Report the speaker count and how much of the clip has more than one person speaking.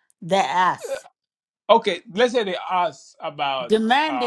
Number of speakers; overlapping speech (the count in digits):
2, about 5%